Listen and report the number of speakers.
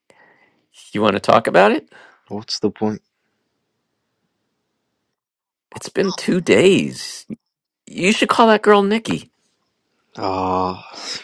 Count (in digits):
2